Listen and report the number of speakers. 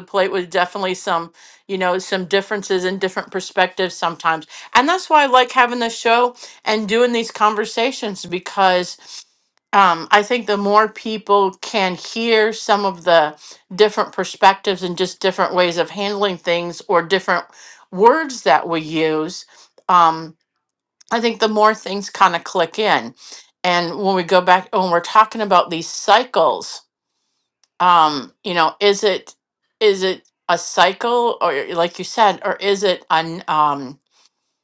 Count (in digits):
1